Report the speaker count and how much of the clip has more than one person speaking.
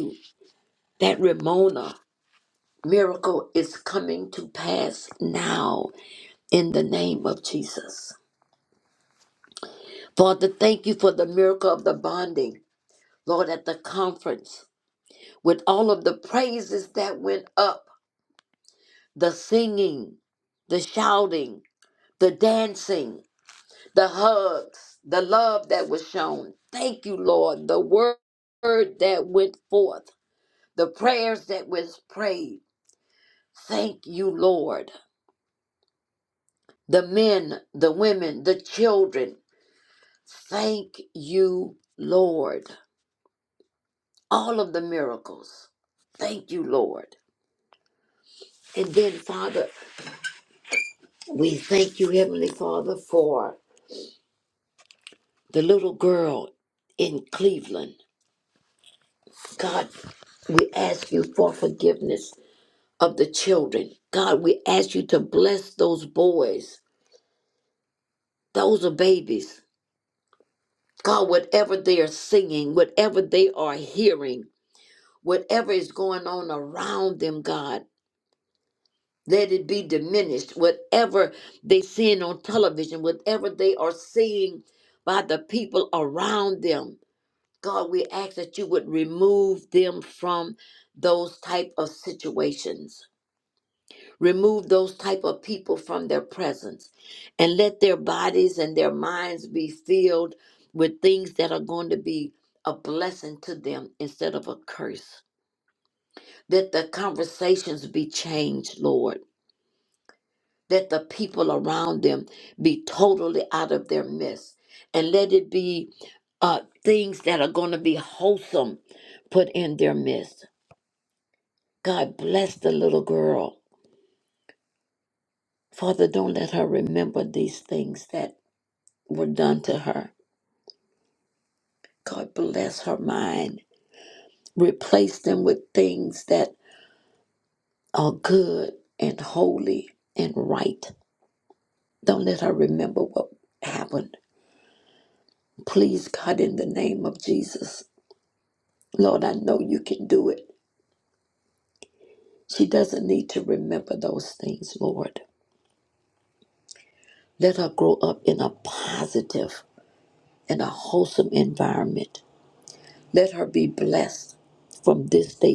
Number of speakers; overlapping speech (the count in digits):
1, no overlap